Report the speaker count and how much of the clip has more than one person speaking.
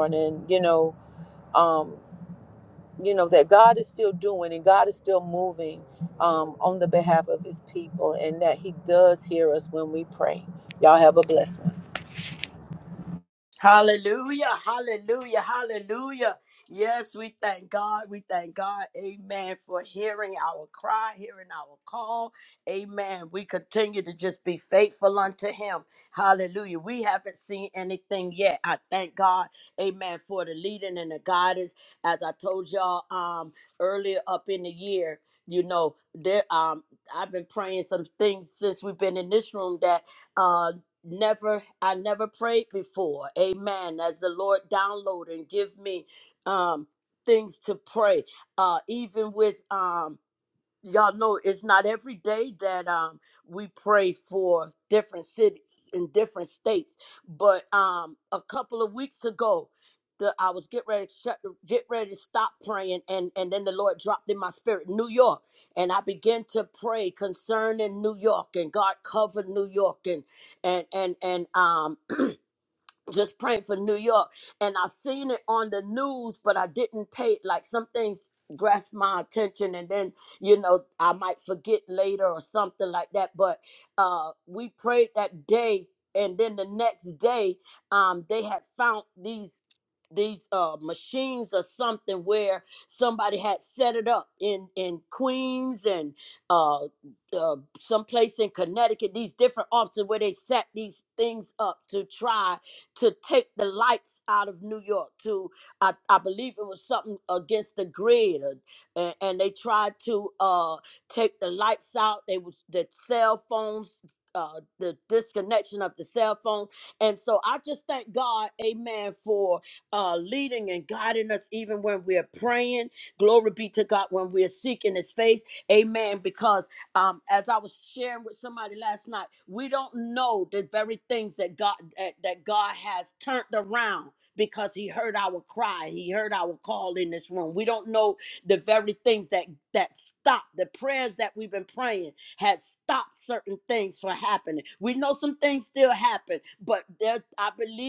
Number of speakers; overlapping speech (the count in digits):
2, no overlap